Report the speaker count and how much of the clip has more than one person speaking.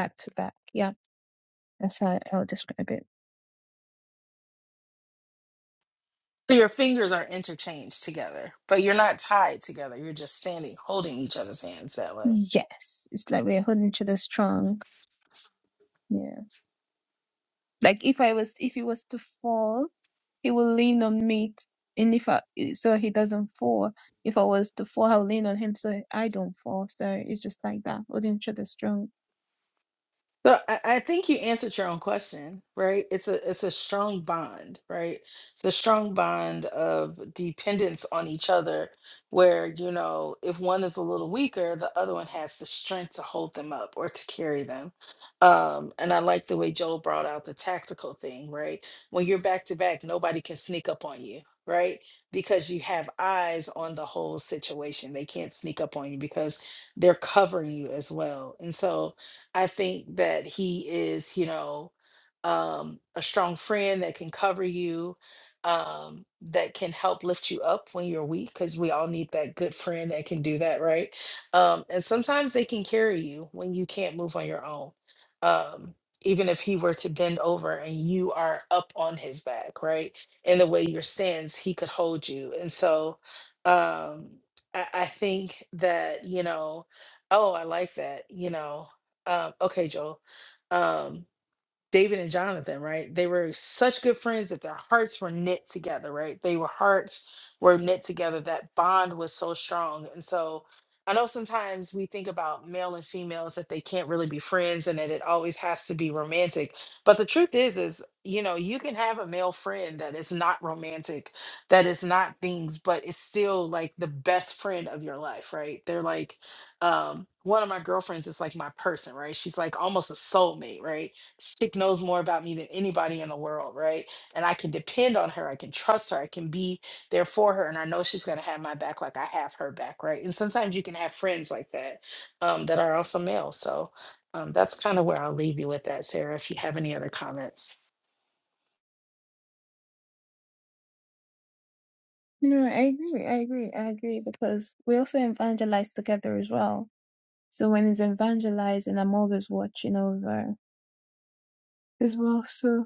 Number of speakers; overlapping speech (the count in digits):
2, under 1%